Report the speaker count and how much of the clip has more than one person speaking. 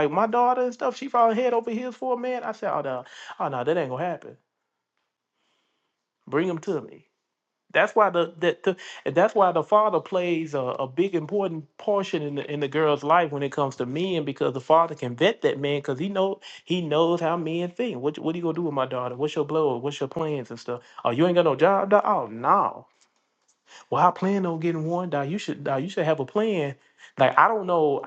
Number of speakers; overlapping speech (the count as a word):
one, no overlap